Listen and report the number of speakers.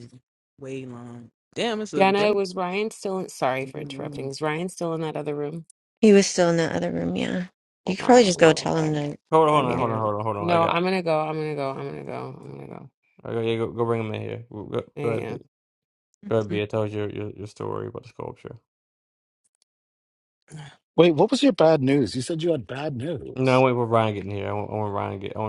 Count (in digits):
5